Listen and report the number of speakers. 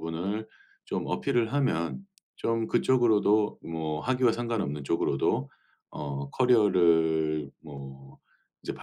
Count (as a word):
one